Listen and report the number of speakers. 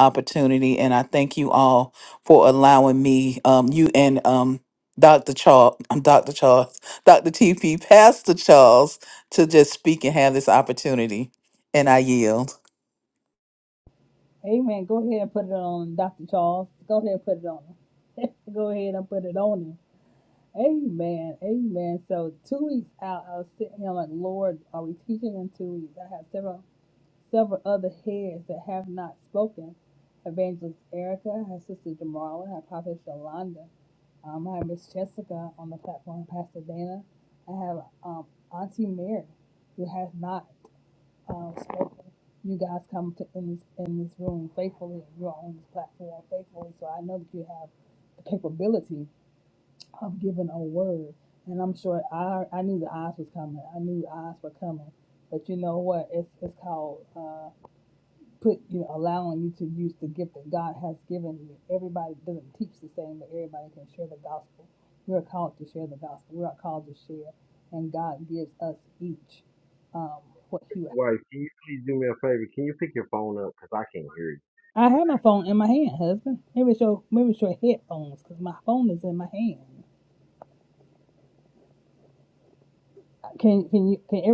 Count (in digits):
3